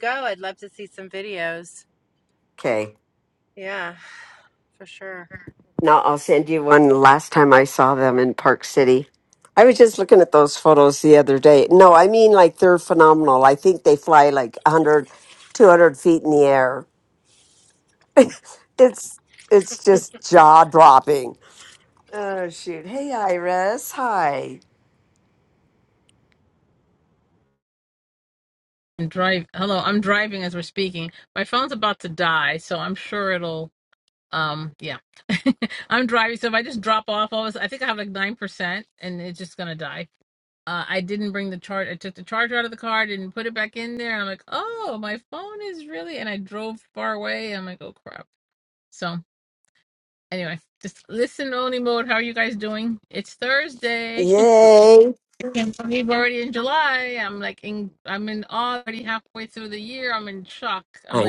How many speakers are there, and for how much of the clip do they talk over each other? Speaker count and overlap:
three, about 1%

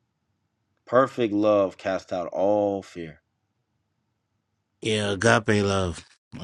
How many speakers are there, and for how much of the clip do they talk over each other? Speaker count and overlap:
two, no overlap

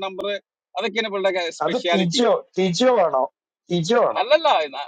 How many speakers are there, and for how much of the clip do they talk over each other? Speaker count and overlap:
two, about 14%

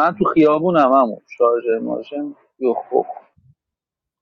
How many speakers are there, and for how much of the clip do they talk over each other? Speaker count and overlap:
one, no overlap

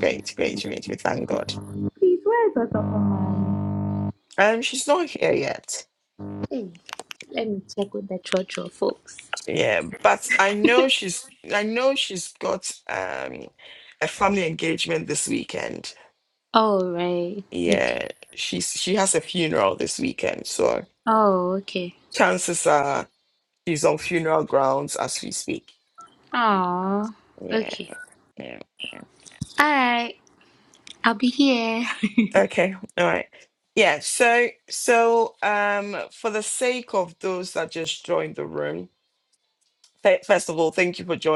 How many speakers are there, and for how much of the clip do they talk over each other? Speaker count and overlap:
two, about 2%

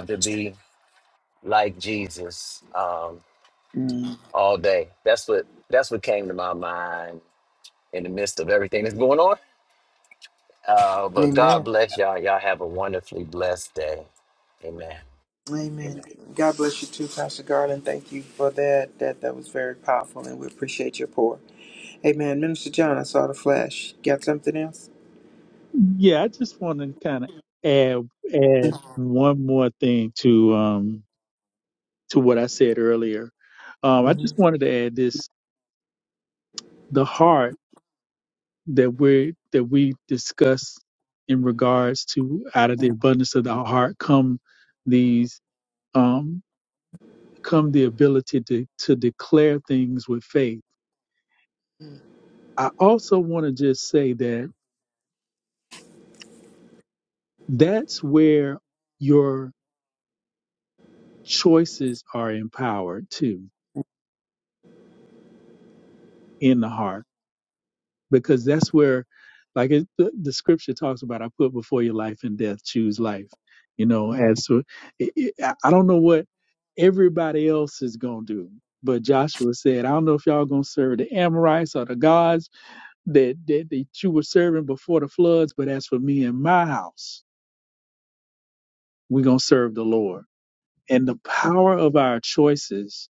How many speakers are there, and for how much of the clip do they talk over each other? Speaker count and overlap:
three, about 1%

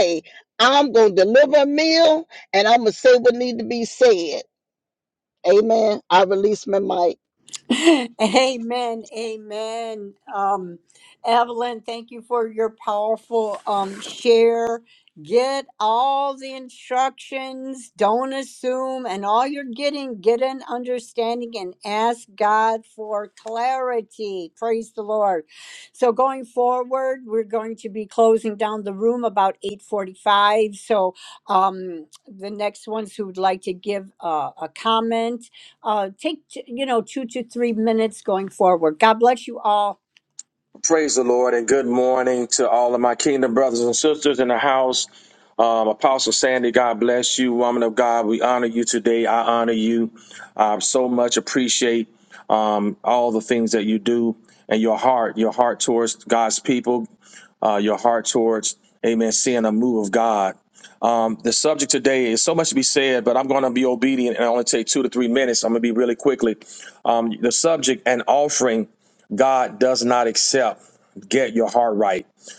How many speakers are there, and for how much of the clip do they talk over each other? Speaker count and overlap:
three, no overlap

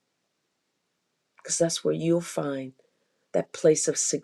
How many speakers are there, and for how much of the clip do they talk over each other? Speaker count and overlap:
one, no overlap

